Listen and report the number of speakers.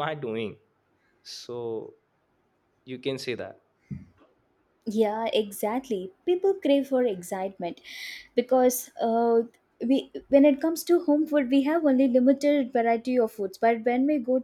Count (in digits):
2